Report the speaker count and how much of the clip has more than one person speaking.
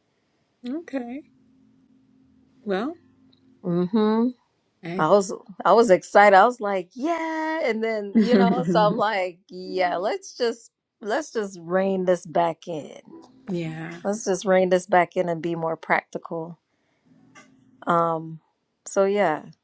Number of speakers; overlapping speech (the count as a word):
two, under 1%